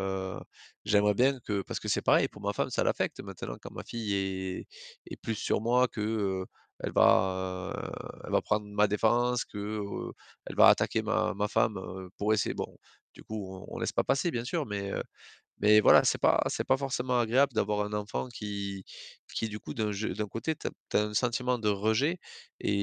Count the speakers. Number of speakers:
one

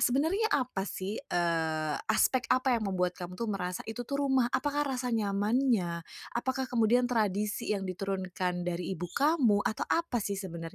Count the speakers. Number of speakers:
one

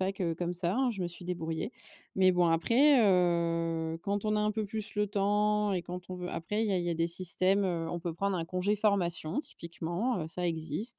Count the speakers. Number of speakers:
one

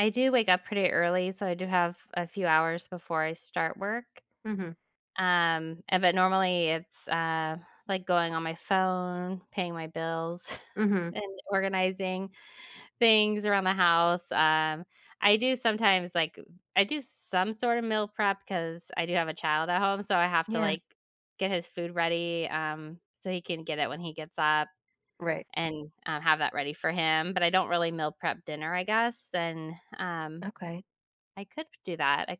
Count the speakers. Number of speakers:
two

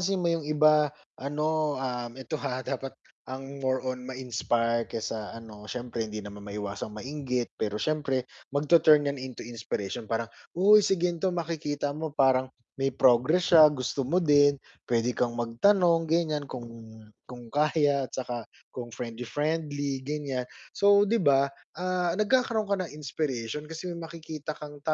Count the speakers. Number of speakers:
one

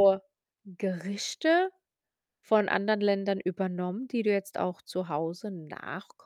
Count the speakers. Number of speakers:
one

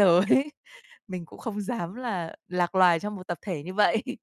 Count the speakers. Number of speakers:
one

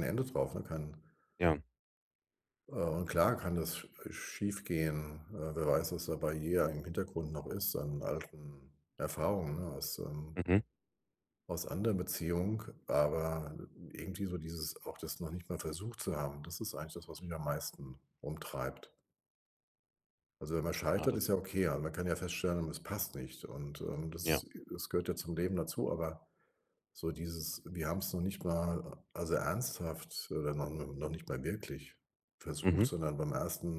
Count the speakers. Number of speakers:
two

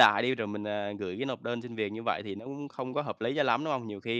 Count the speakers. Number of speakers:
one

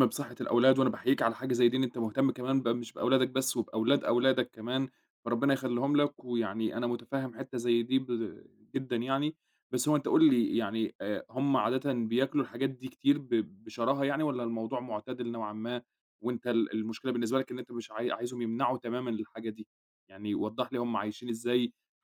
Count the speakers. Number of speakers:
one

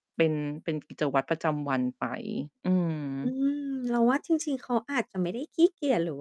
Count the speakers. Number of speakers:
two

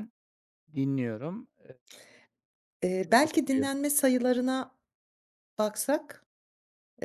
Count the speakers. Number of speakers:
two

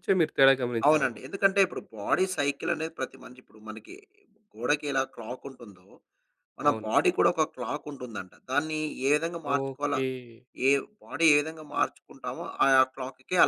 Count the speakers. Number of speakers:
two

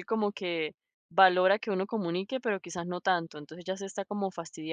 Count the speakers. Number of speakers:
one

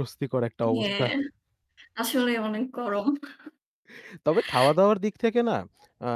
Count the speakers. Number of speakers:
two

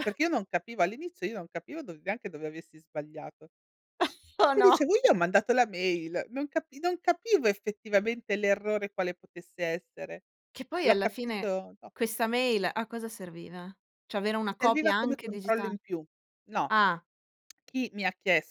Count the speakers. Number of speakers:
two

